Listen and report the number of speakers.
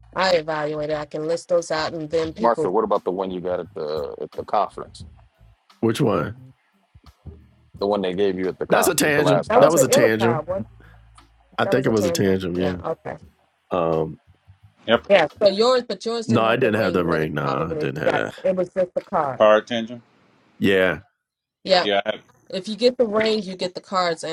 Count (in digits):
4